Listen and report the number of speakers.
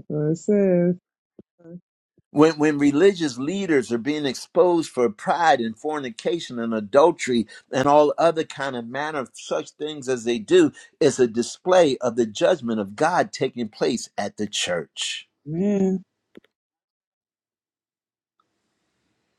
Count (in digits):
2